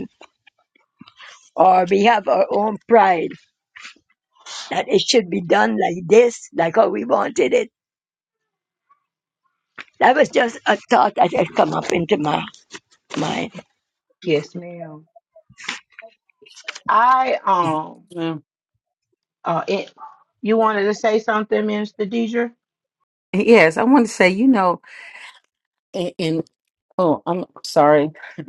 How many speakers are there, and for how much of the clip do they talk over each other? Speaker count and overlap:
3, no overlap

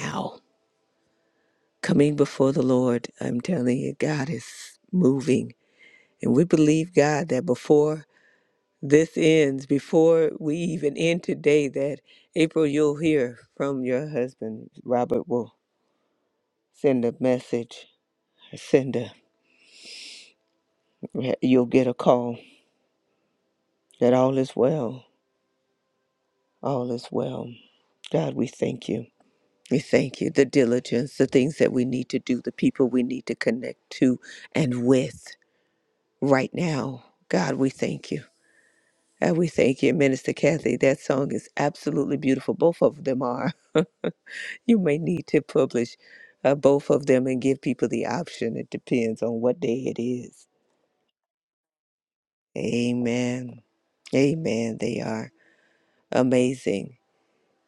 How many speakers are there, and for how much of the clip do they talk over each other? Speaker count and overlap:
1, no overlap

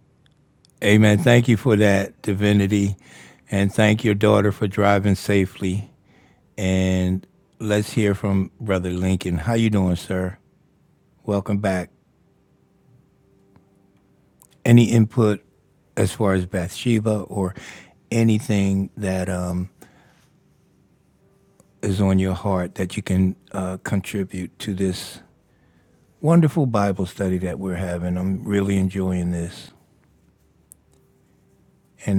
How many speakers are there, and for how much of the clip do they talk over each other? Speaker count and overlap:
1, no overlap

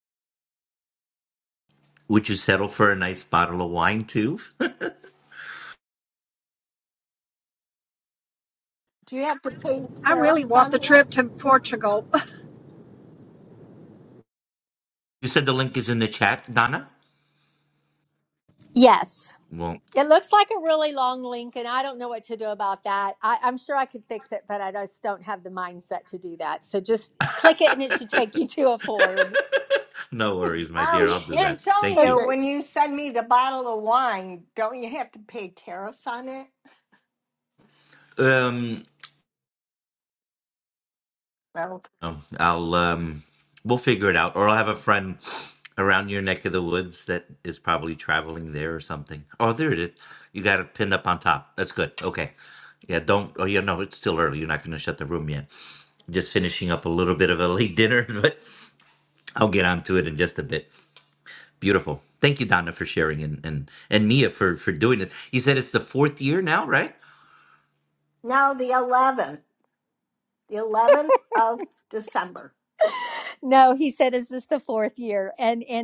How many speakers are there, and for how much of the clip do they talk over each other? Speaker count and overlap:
4, about 3%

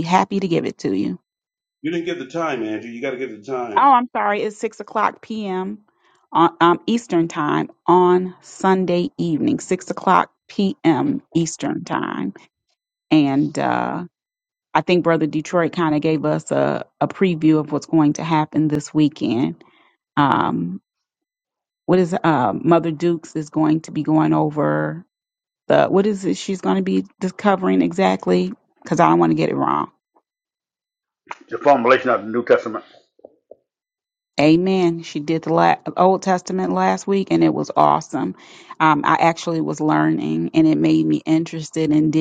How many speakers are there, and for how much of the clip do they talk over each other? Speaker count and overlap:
3, under 1%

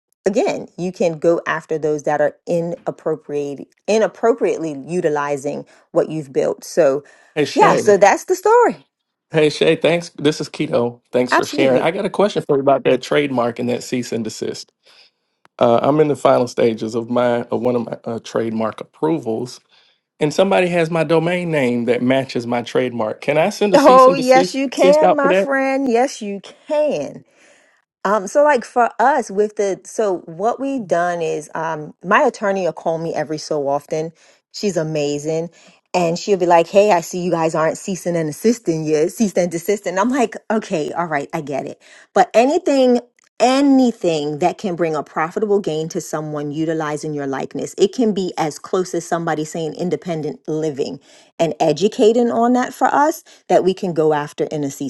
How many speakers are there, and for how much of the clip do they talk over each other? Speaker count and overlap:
2, about 3%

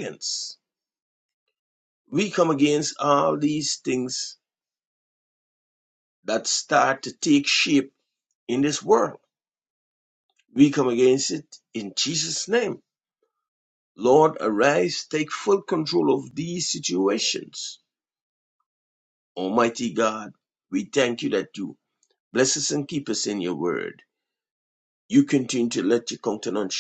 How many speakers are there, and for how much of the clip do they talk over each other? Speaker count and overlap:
1, no overlap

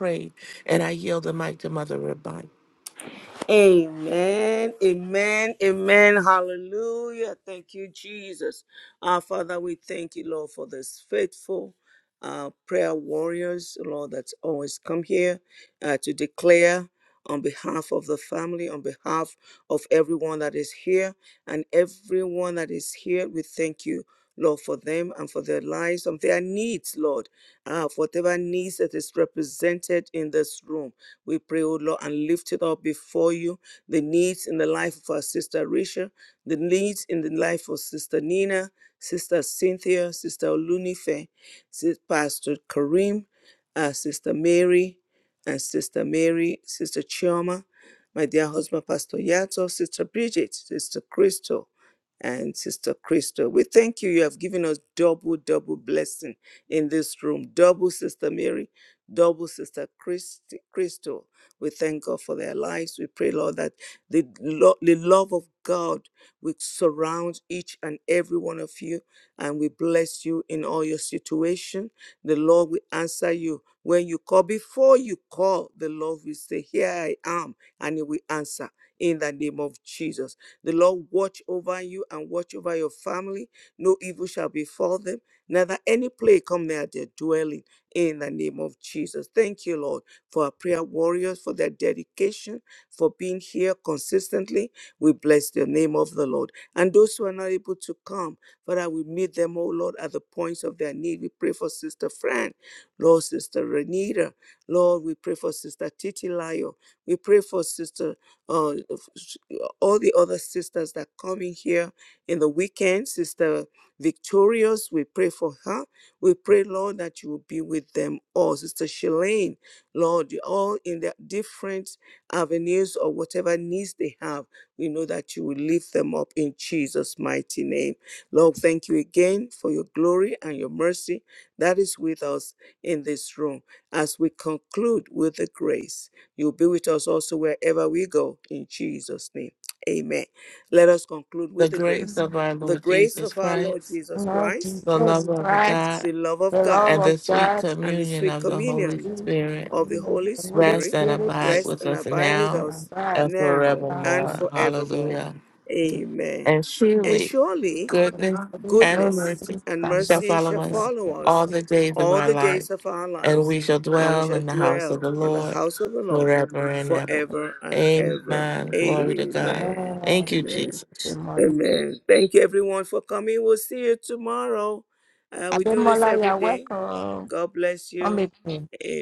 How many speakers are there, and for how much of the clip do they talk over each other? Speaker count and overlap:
3, about 12%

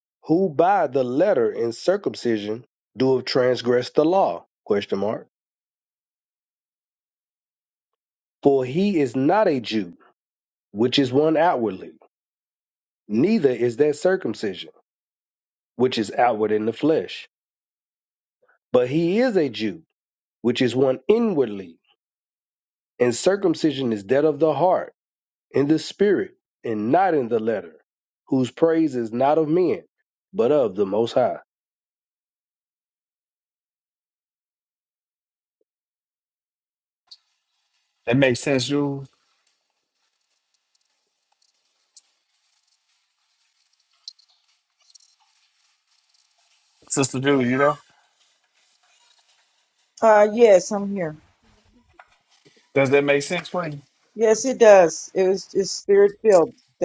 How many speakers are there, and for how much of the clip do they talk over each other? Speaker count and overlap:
3, no overlap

